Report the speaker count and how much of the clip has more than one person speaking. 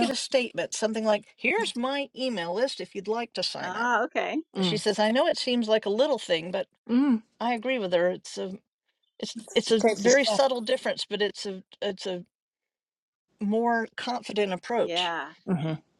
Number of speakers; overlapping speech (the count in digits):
3, about 10%